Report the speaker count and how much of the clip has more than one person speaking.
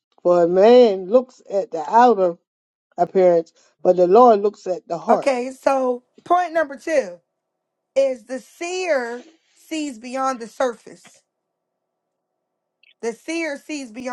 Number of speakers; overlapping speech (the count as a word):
two, about 1%